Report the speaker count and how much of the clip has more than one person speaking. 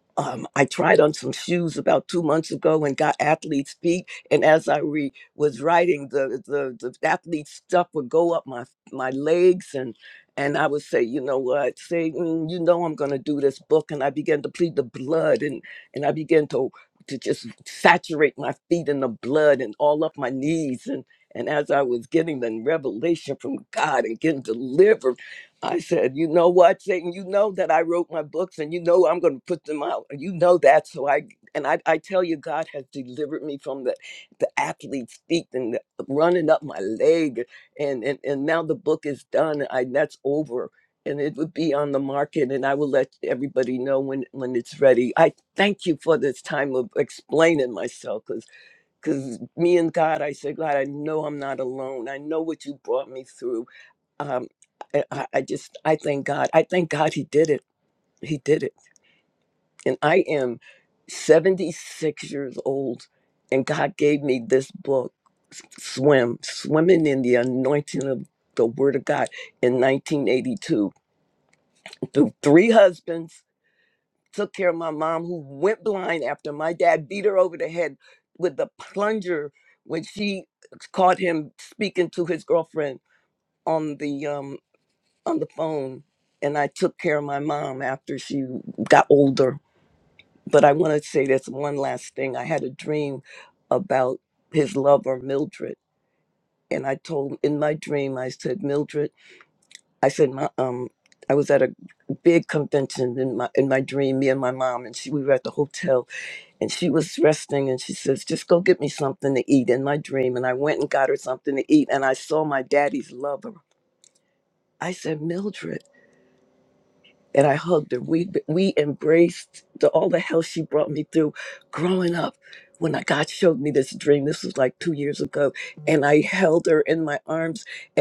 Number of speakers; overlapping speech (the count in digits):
1, no overlap